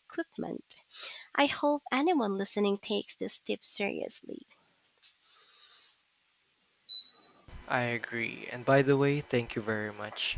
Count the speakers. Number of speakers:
two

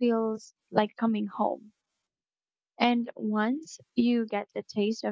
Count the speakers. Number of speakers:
one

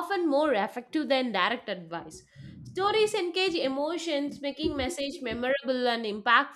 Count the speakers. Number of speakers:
one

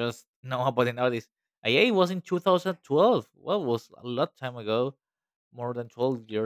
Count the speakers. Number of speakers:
one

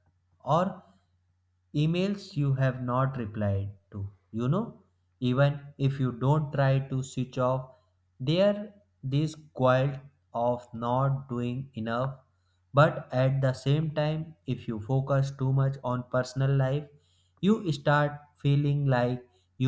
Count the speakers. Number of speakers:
one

